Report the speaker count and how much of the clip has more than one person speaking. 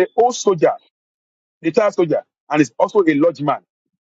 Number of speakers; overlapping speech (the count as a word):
one, no overlap